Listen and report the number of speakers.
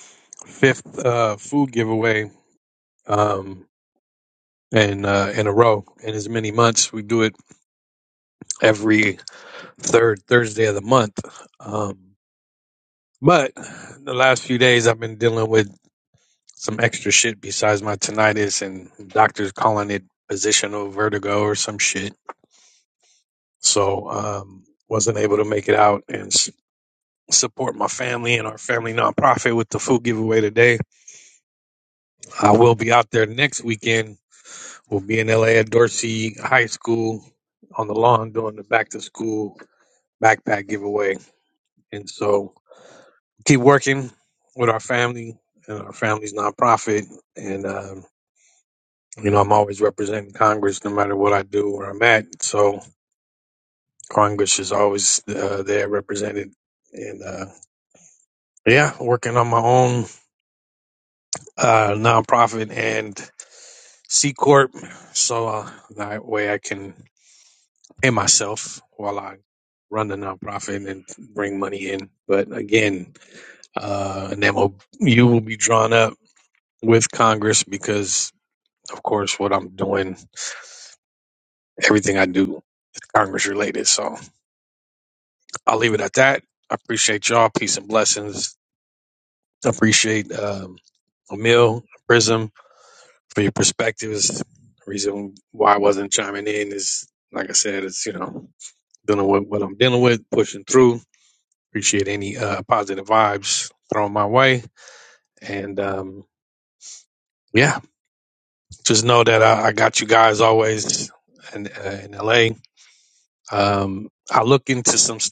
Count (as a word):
one